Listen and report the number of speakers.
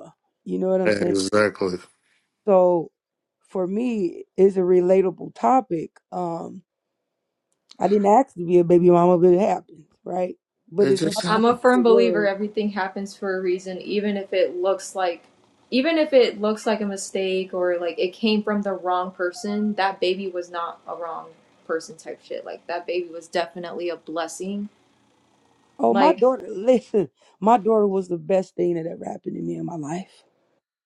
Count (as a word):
three